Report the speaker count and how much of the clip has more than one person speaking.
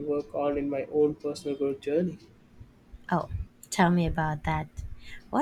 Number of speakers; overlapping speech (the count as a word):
two, no overlap